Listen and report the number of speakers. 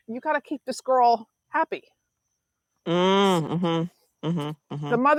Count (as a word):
two